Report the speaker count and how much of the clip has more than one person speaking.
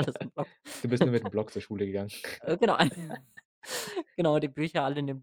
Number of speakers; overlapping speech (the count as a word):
two, no overlap